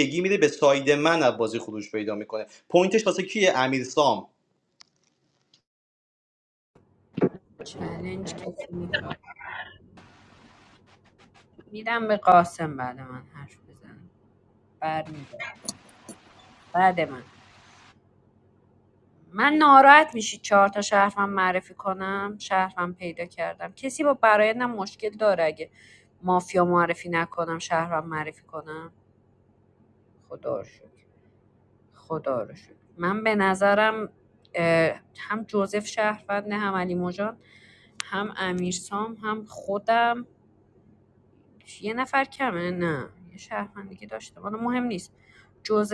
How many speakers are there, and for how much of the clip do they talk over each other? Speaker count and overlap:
two, no overlap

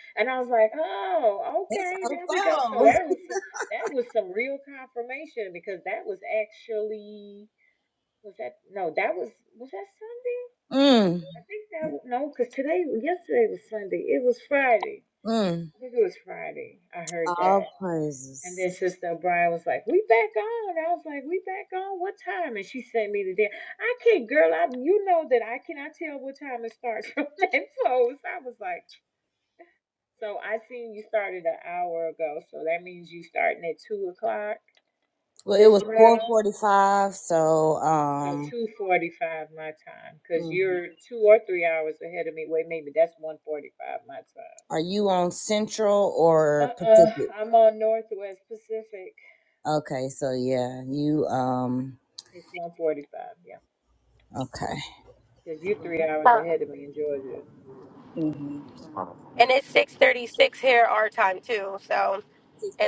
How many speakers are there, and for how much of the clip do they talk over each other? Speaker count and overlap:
three, about 6%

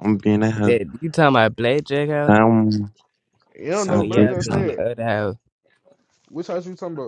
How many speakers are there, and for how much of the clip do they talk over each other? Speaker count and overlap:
three, about 16%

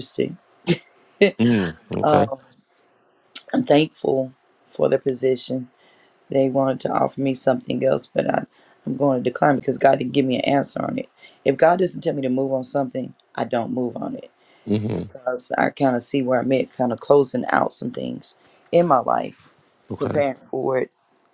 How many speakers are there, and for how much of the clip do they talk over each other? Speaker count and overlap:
two, about 3%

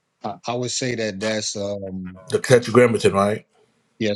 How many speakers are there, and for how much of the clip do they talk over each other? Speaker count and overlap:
two, no overlap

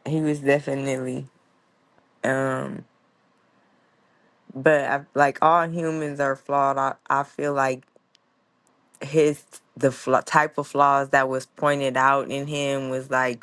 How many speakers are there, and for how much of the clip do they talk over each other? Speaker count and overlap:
one, no overlap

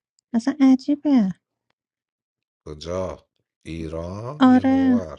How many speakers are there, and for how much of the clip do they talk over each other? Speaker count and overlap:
two, about 12%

